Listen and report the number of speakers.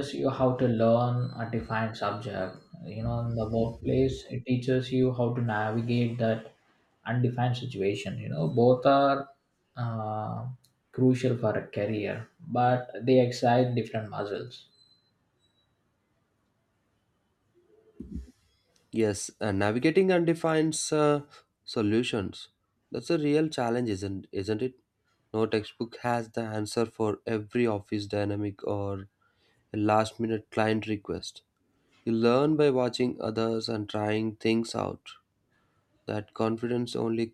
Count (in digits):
2